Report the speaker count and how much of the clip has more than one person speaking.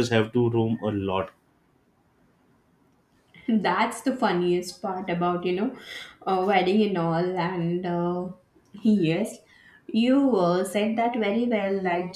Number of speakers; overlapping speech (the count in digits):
2, no overlap